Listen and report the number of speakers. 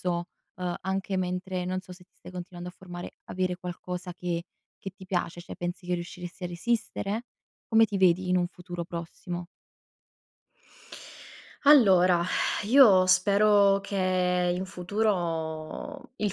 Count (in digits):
2